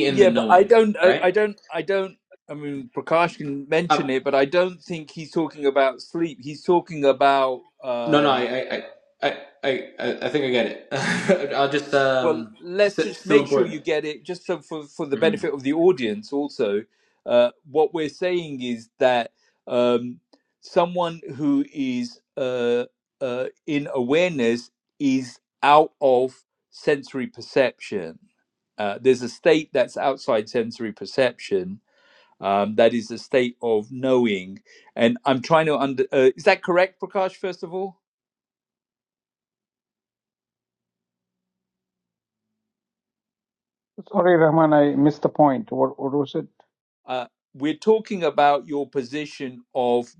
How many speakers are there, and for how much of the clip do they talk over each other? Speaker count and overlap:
3, about 6%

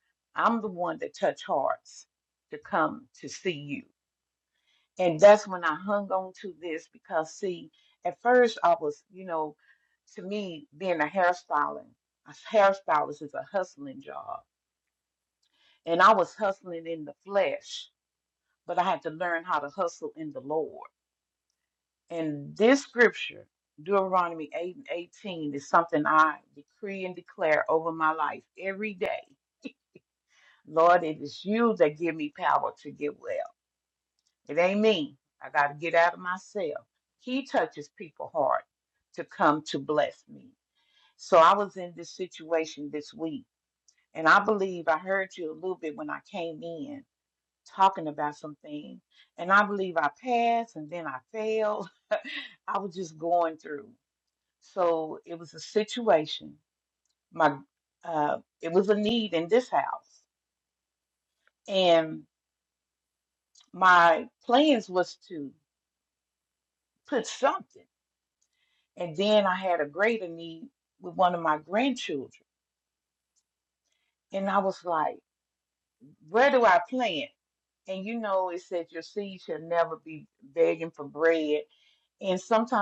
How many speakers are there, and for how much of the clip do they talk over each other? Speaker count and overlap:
1, no overlap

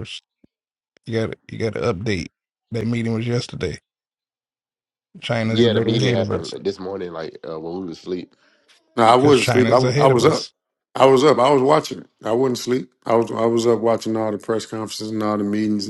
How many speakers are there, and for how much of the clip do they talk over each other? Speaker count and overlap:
3, about 15%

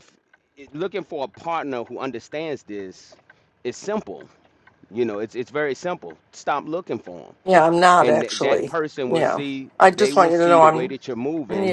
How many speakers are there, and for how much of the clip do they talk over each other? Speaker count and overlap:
2, about 20%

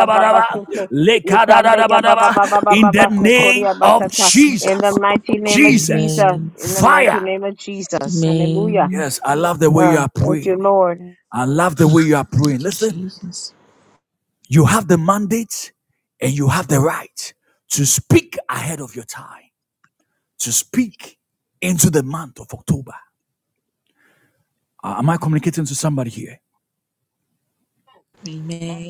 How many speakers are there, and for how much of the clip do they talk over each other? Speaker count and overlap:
3, about 30%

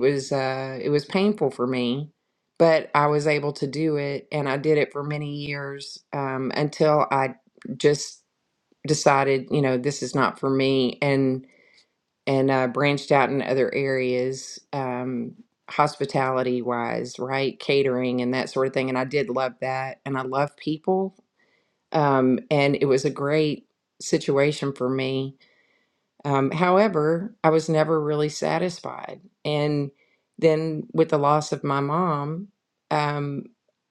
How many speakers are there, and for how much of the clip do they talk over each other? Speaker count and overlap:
1, no overlap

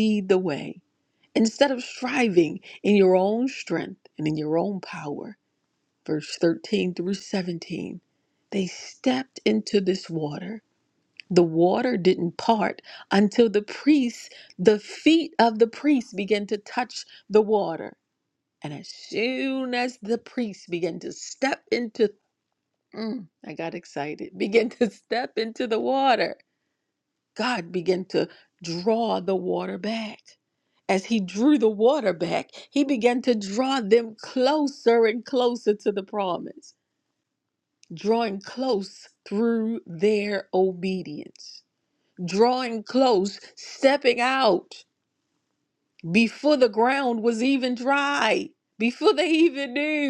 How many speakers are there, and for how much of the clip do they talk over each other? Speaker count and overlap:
1, no overlap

